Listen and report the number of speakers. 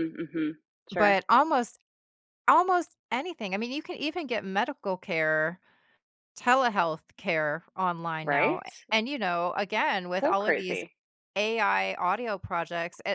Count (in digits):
2